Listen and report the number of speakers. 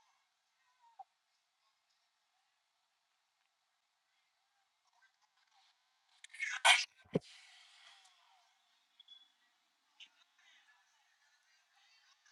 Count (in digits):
0